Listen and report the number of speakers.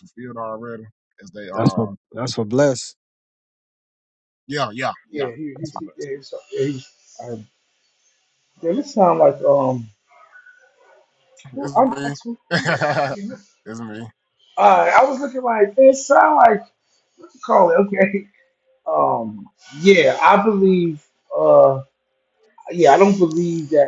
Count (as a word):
three